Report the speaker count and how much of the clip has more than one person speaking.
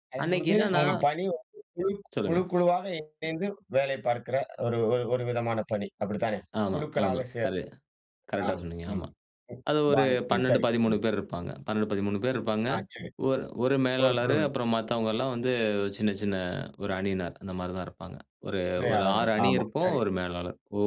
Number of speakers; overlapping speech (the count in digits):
2, about 26%